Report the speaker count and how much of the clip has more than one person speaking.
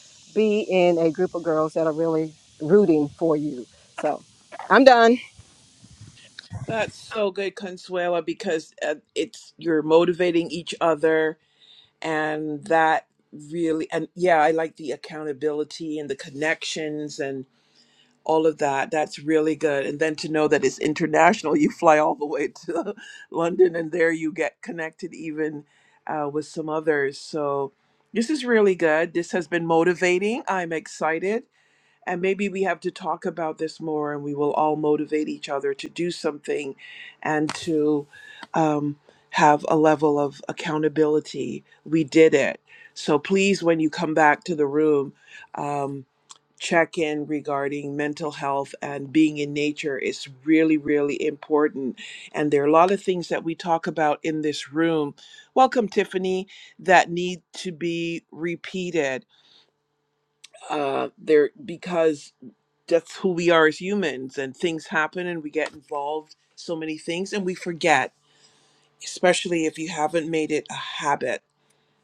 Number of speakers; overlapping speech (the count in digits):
2, no overlap